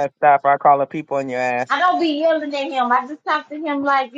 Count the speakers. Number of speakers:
2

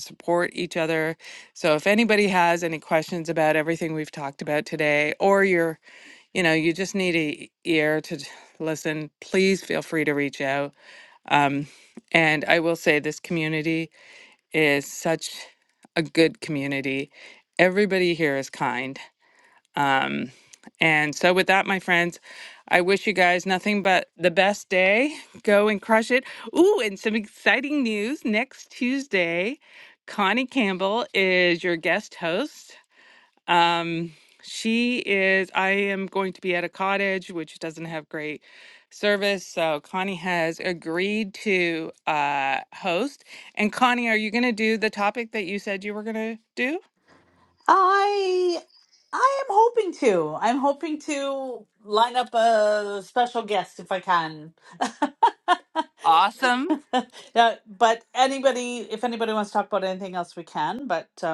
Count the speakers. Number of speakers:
2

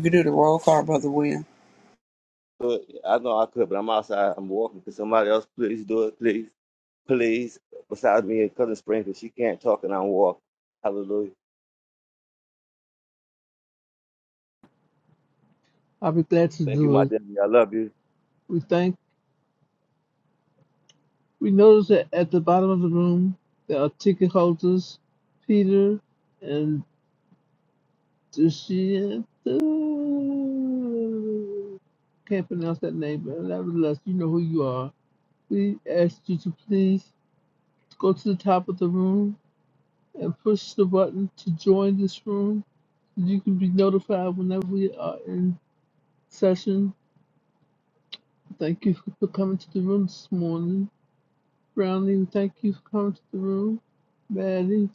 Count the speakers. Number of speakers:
3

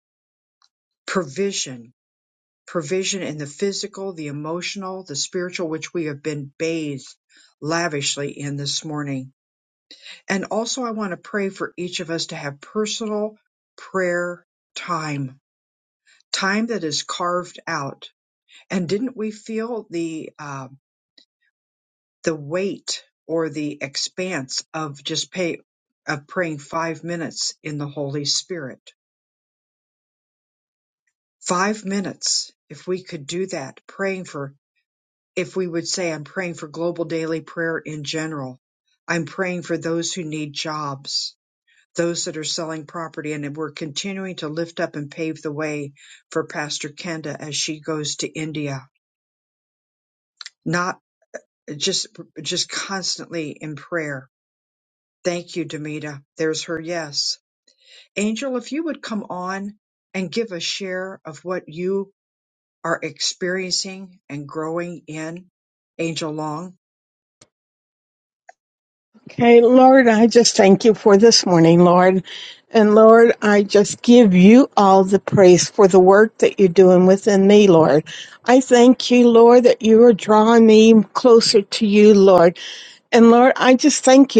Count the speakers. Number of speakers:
2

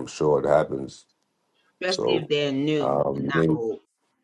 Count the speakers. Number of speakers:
2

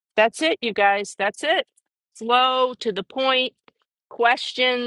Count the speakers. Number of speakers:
1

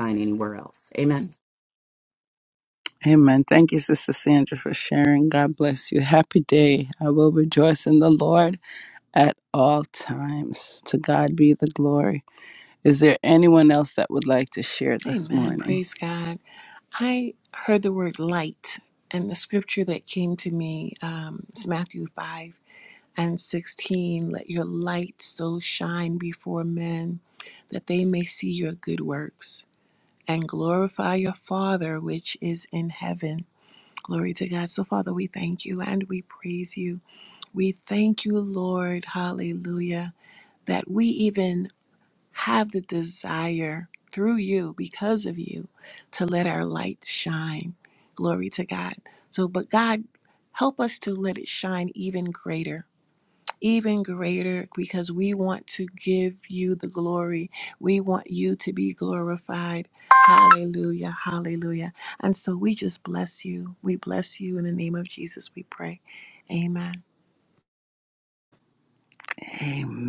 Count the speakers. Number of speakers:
3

